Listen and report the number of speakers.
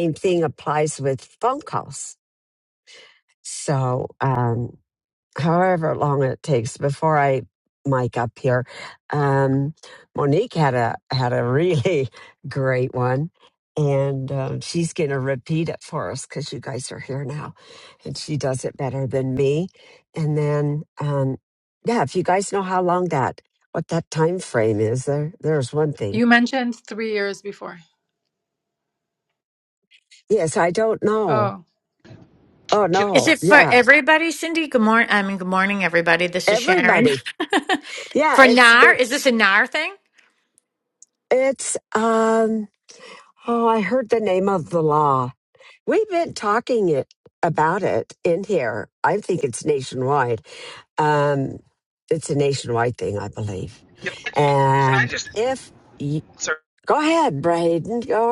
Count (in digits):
4